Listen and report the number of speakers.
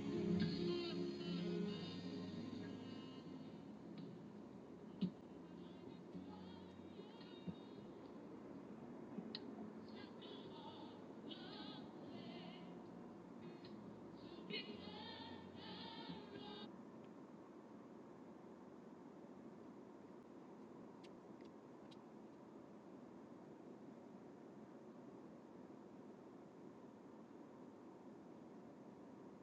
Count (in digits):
0